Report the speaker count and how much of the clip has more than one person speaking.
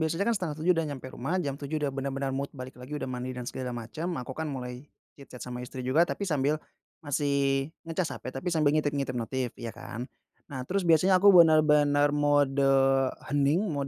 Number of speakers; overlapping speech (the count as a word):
one, no overlap